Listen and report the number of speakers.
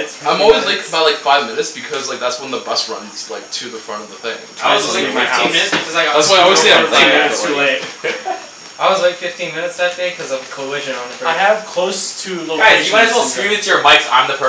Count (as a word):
four